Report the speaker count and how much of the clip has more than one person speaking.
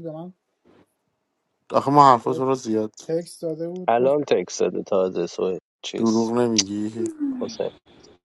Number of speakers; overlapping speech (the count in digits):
3, about 6%